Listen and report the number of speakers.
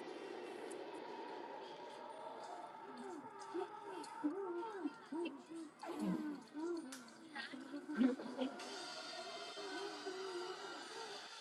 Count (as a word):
zero